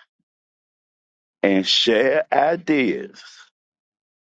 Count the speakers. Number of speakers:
one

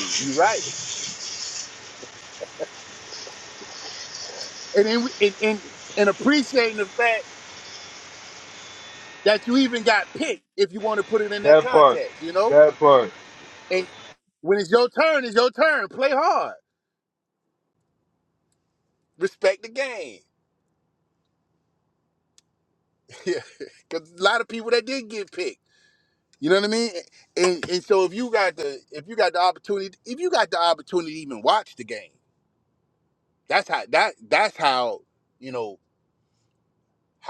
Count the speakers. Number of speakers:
two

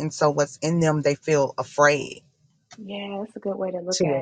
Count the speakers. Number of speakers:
two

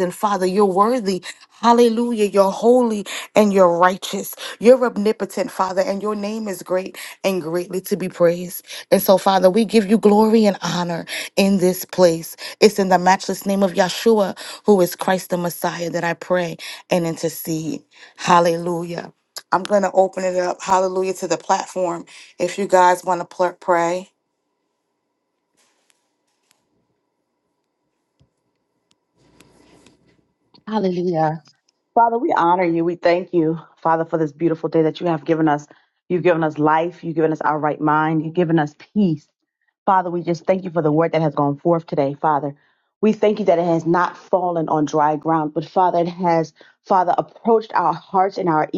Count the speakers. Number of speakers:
two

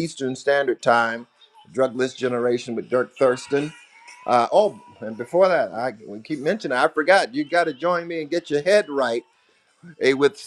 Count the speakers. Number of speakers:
one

